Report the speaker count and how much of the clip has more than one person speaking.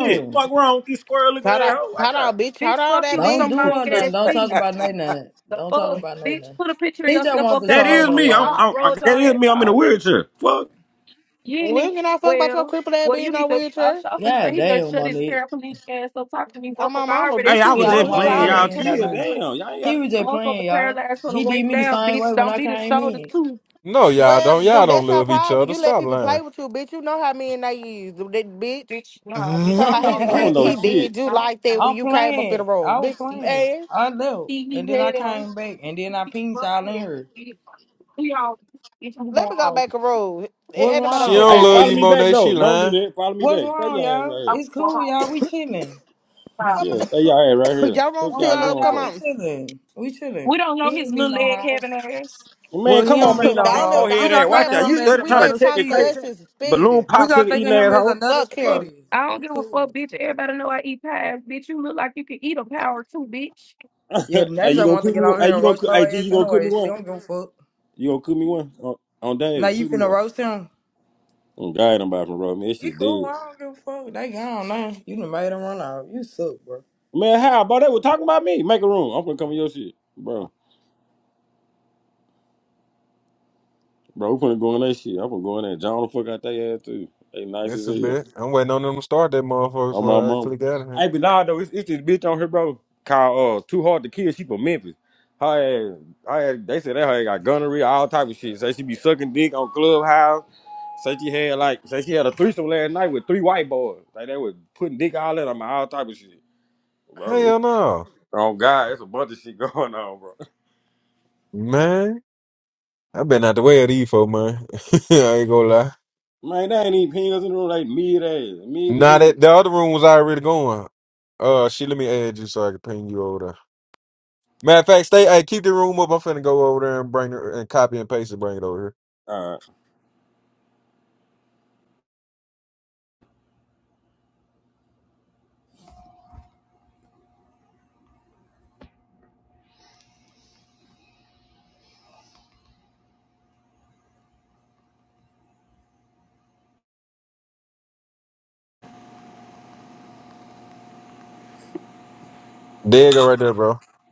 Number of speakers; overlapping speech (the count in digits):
5, about 27%